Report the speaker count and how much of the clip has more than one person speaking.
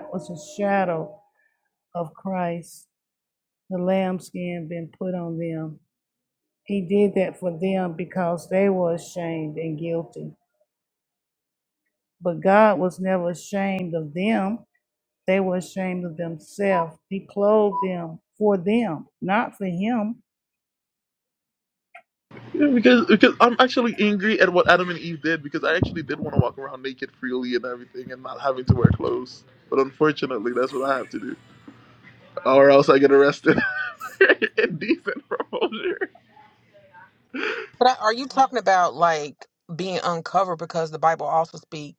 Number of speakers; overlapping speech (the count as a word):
three, no overlap